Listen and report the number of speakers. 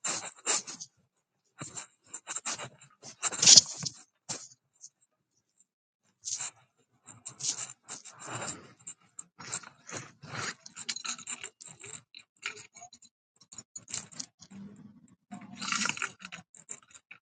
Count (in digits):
0